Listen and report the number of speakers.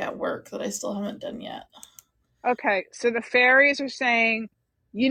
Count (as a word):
two